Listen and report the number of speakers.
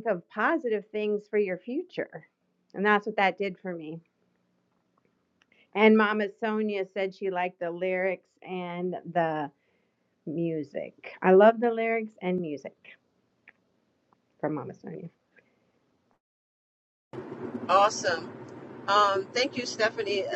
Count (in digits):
2